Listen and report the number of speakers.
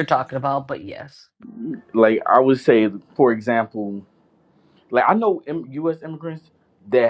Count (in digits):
2